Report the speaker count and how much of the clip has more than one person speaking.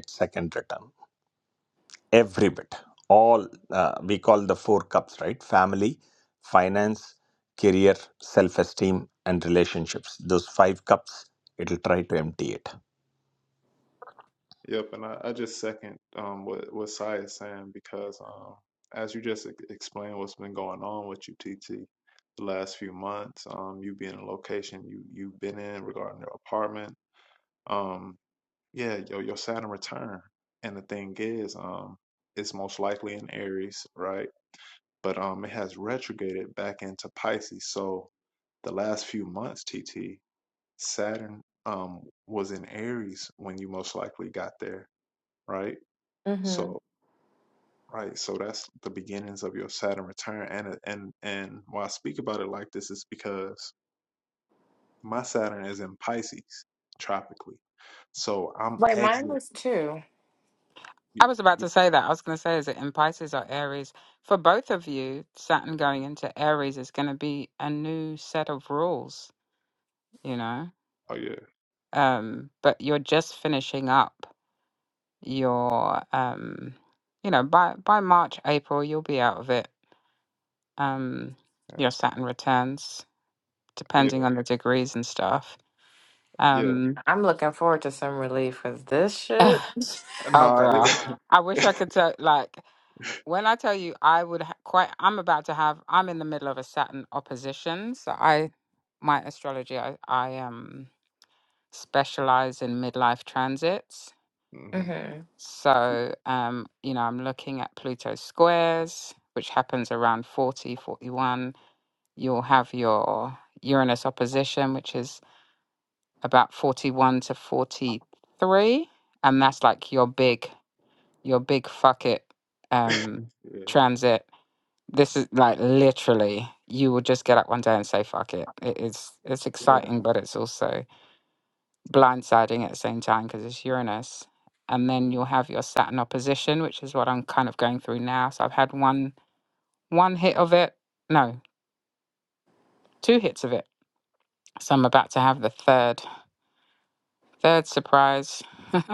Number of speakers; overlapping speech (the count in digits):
4, about 2%